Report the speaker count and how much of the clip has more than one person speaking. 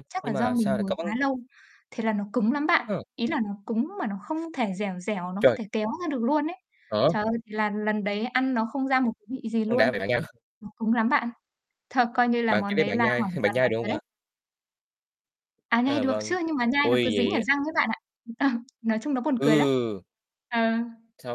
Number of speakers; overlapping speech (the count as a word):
two, about 21%